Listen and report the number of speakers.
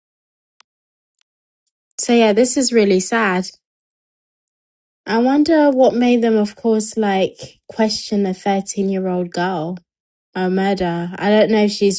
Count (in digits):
1